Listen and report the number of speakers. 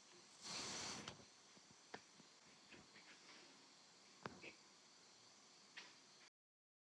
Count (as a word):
zero